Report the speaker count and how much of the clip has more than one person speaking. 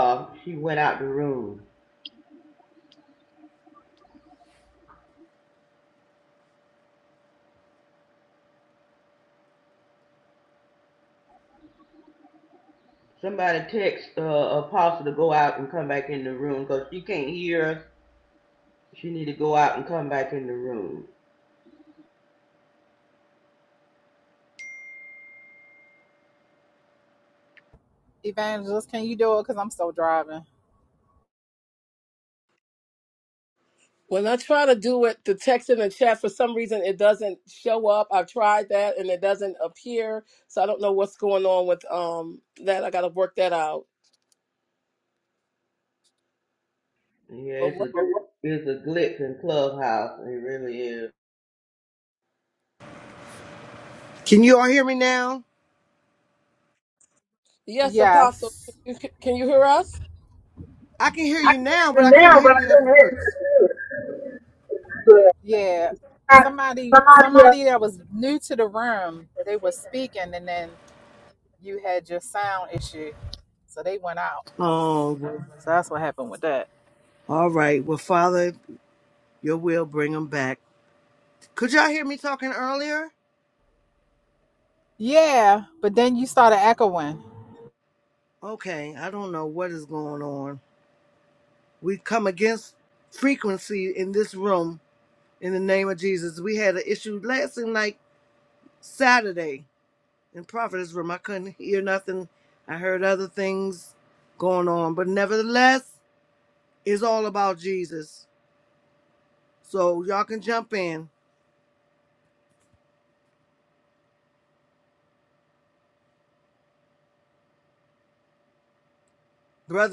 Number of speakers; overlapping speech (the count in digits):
4, about 3%